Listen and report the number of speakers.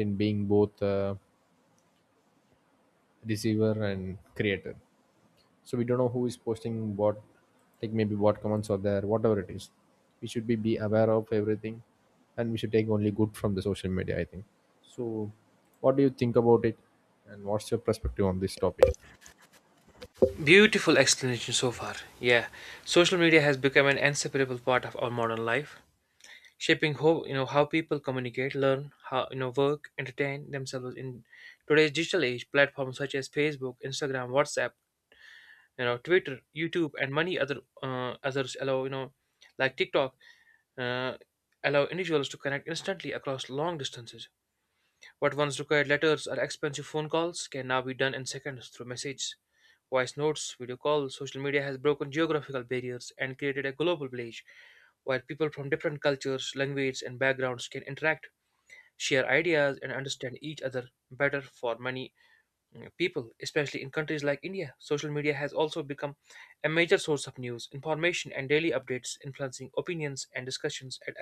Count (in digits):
2